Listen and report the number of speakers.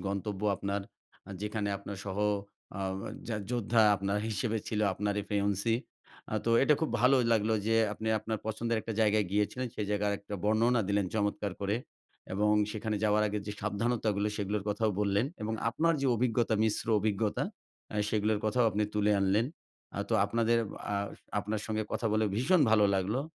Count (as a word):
one